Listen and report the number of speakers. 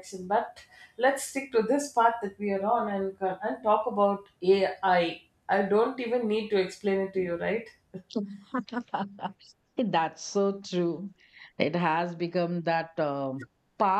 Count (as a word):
two